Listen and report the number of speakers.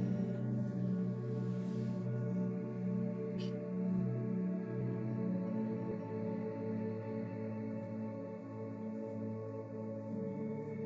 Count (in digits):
0